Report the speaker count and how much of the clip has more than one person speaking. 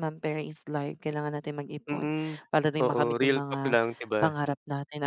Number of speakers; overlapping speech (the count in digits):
2, about 25%